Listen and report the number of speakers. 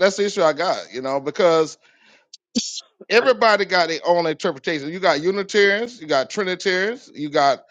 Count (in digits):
1